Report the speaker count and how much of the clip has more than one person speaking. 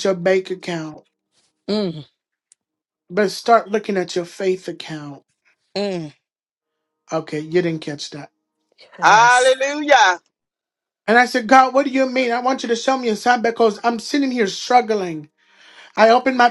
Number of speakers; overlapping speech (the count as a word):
three, about 3%